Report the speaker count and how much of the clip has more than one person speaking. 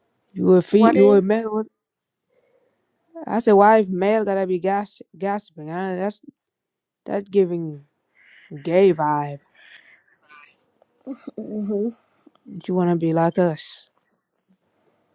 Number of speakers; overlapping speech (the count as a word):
two, about 4%